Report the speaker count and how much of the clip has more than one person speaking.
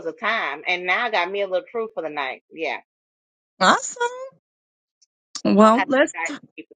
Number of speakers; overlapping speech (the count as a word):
two, about 7%